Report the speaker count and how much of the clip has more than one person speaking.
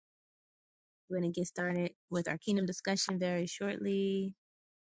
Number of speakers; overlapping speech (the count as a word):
one, no overlap